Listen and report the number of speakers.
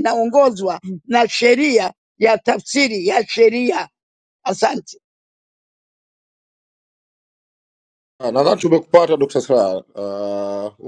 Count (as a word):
two